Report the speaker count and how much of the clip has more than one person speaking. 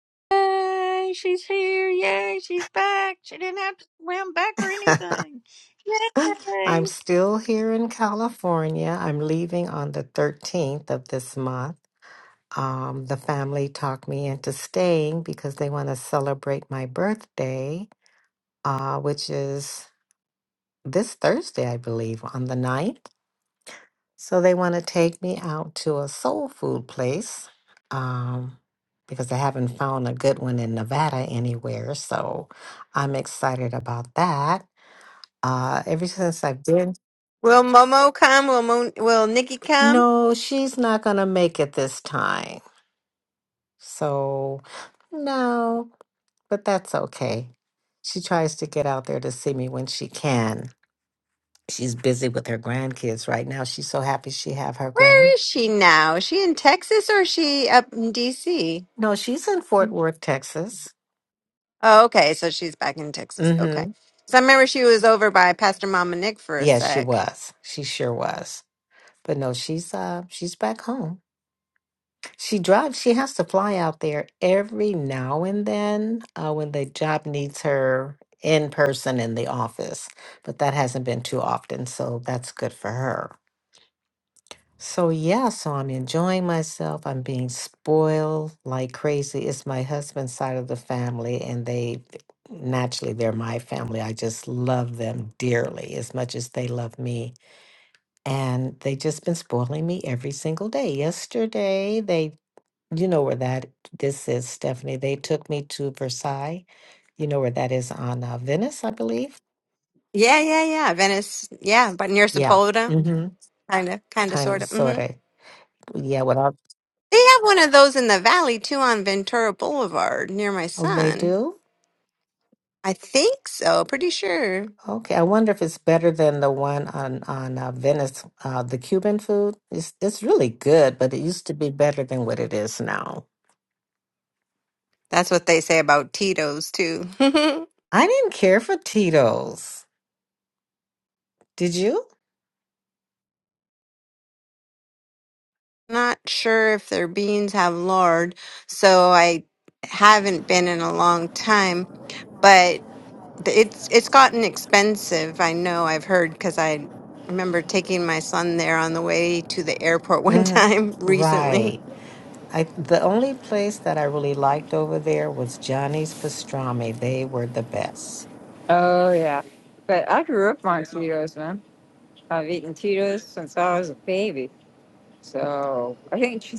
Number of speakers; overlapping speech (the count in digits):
4, about 3%